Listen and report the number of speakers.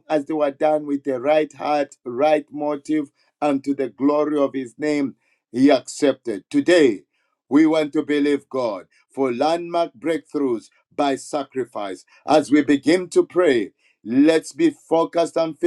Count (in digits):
1